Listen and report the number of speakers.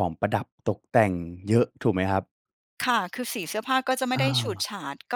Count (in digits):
2